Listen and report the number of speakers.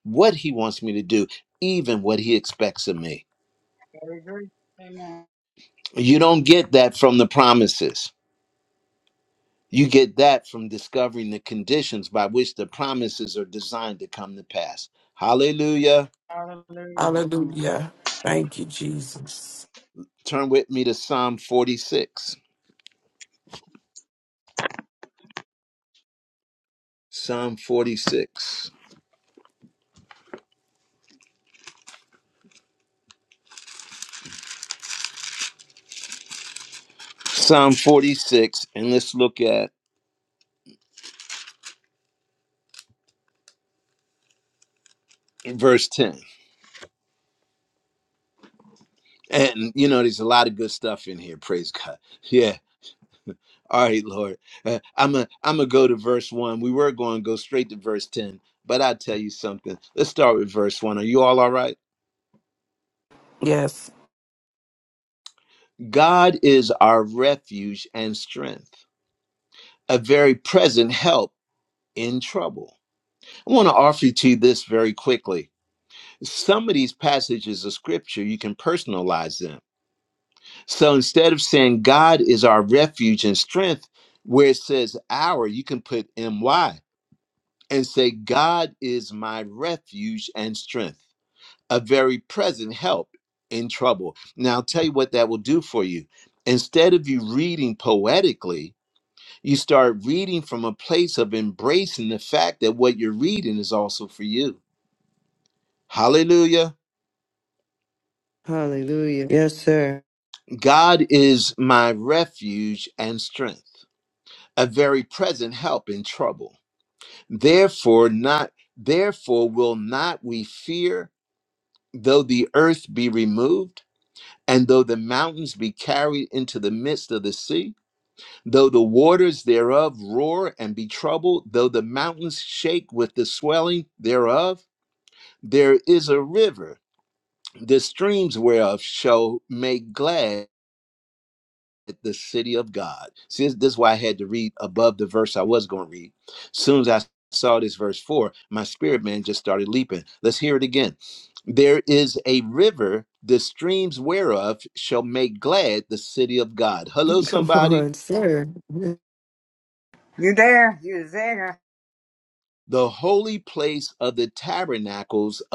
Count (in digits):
5